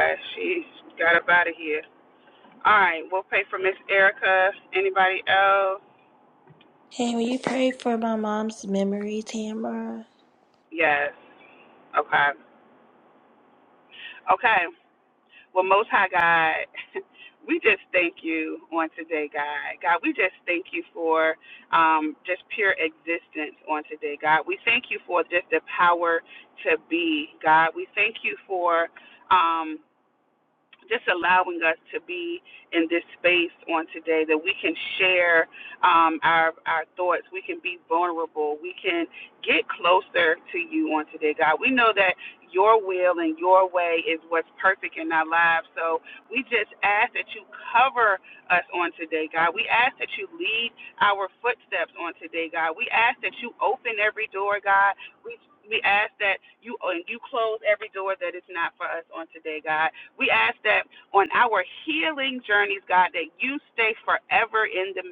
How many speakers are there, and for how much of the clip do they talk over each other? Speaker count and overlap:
2, no overlap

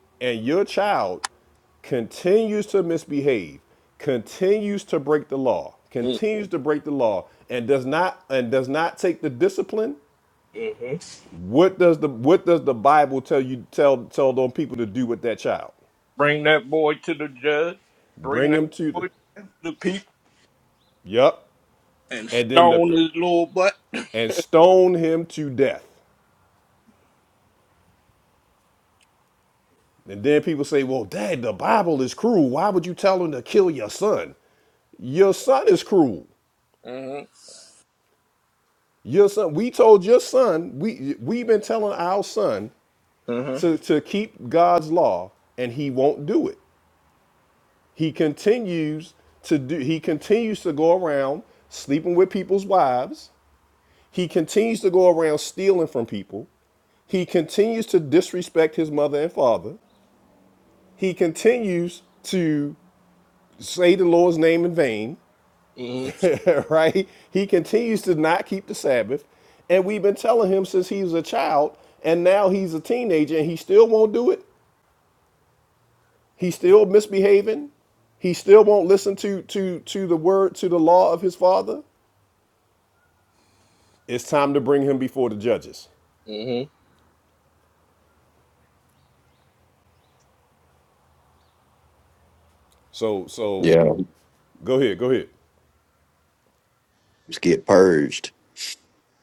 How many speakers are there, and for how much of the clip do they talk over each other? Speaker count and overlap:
3, about 1%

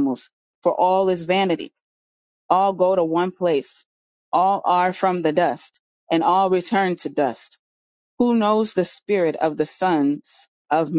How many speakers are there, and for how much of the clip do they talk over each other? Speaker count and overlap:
1, no overlap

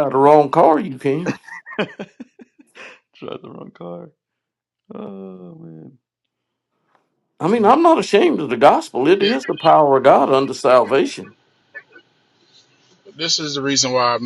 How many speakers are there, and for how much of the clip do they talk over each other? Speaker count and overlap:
3, about 2%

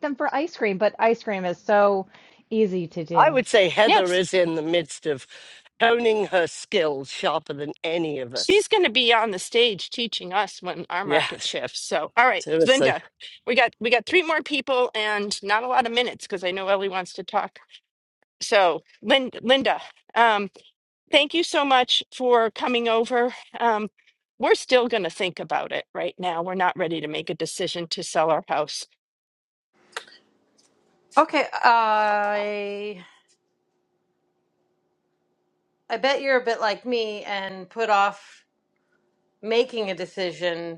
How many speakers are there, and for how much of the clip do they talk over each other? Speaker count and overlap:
4, about 4%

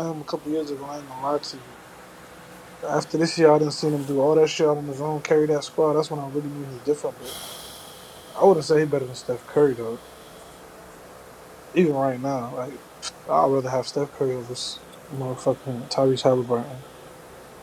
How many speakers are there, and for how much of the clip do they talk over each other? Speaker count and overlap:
1, no overlap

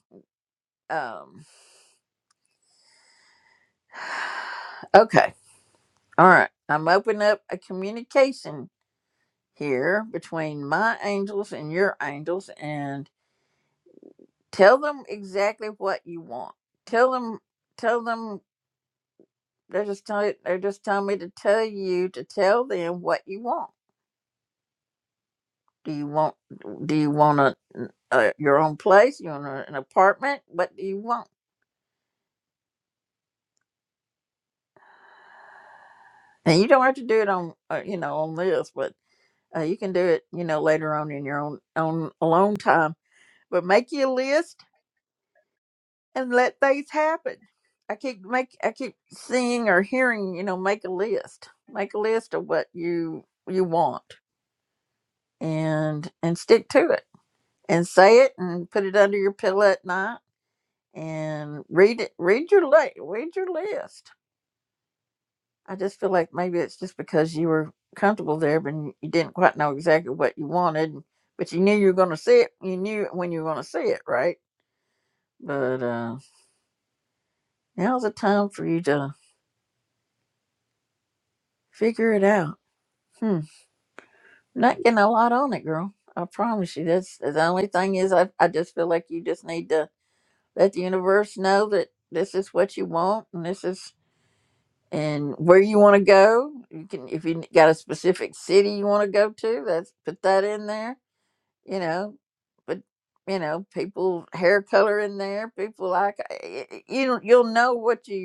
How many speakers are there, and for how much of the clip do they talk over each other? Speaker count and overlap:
1, no overlap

